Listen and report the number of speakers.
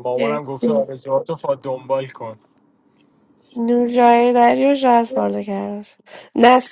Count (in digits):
2